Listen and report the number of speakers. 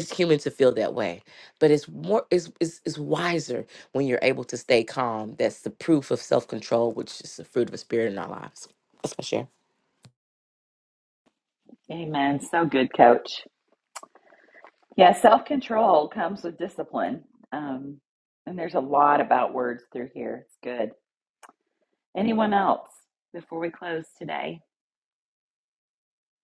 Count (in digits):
2